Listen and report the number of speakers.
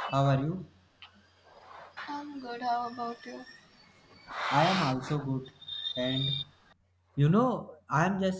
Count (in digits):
2